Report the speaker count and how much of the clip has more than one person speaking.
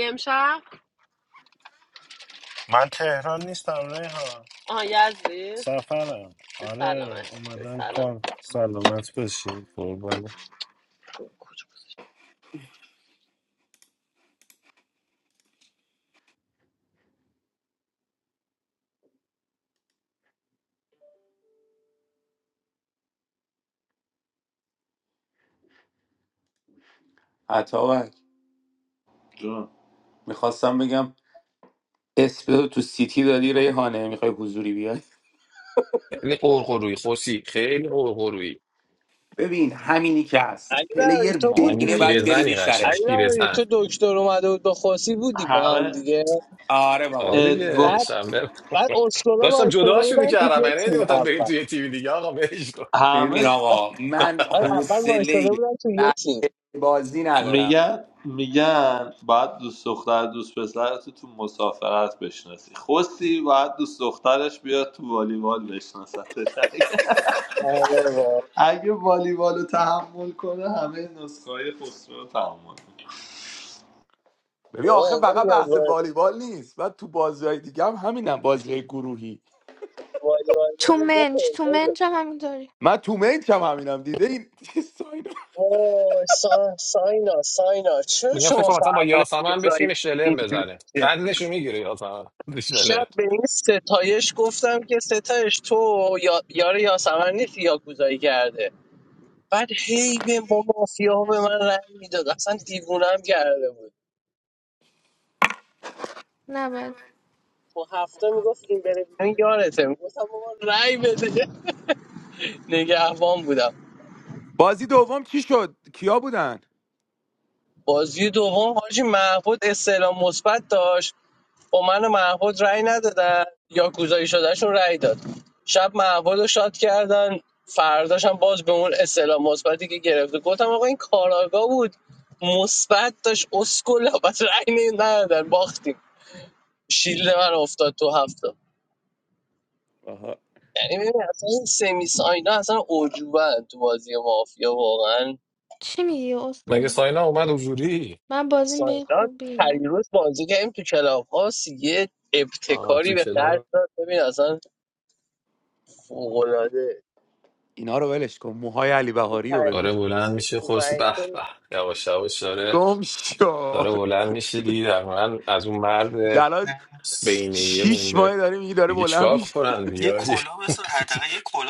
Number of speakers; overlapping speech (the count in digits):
8, about 11%